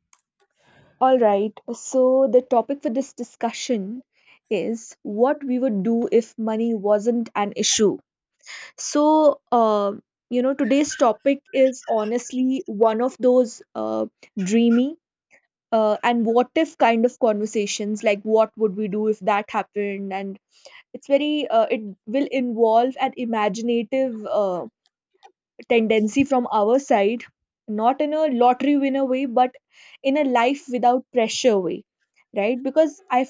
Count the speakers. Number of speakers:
1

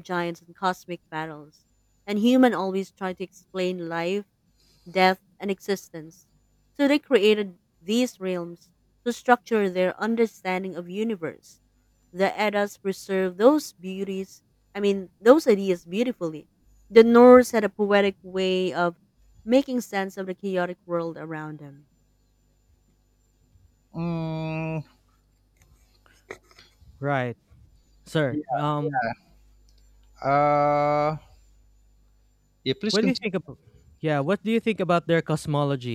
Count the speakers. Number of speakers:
3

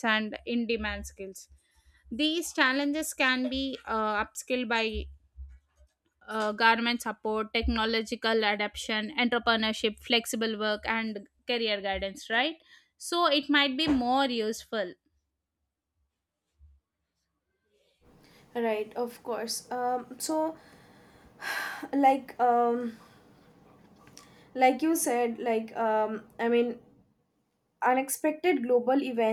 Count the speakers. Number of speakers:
2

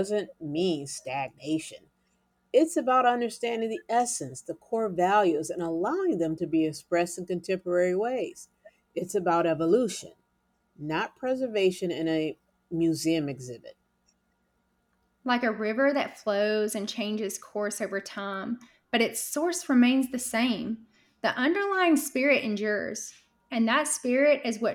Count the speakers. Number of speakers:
2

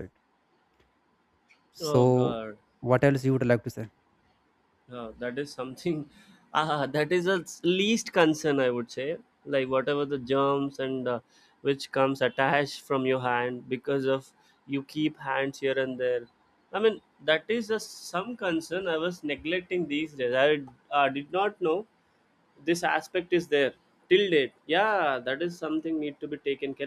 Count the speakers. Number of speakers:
2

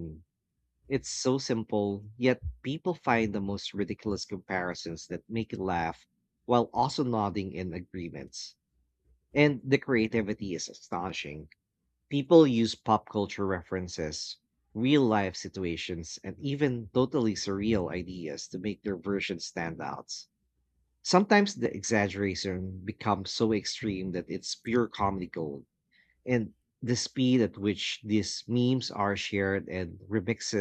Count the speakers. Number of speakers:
1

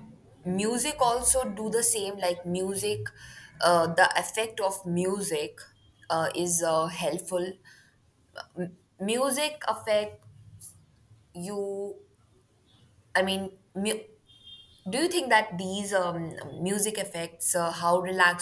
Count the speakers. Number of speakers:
1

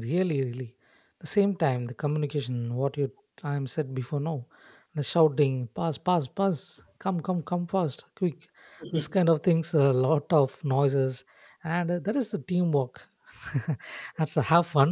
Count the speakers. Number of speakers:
1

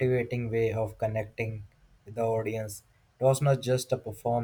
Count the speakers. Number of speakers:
1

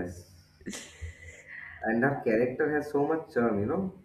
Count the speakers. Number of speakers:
1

